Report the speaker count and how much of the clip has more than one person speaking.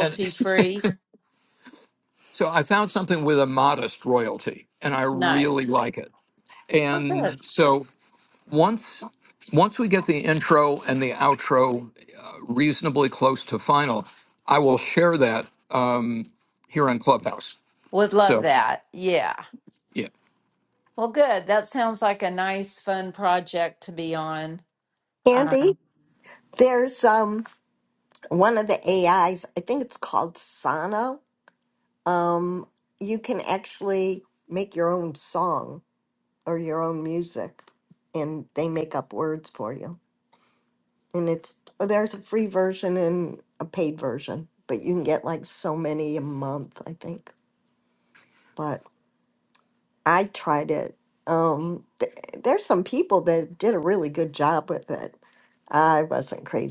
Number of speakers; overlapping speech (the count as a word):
three, about 3%